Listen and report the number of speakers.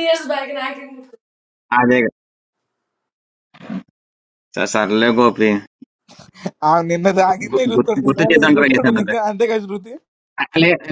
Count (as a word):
three